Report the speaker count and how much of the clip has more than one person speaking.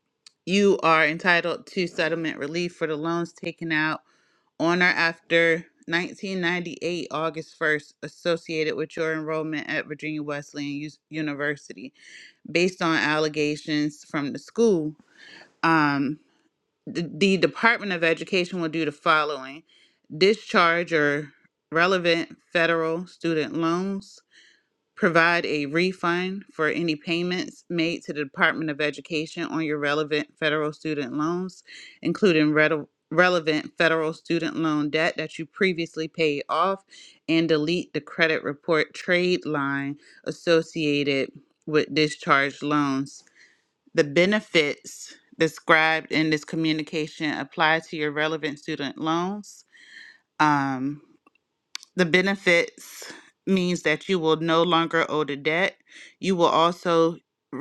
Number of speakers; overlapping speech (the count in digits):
1, no overlap